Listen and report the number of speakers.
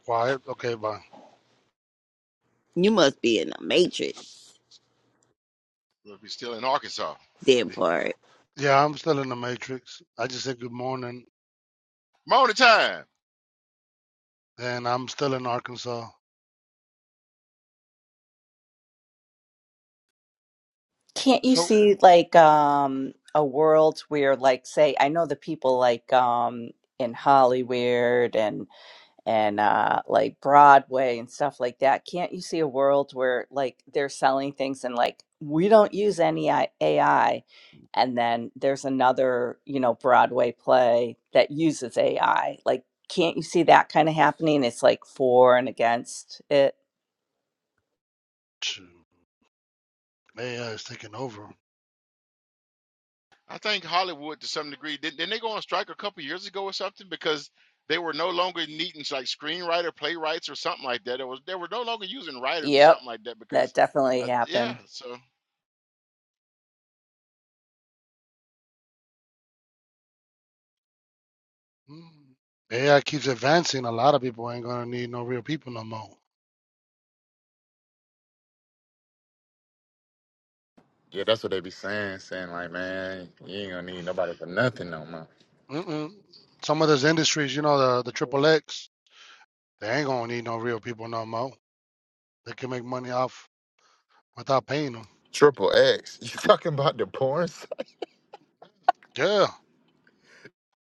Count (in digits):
5